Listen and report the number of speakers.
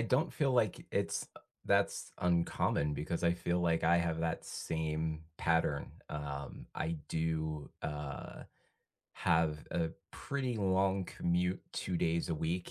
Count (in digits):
1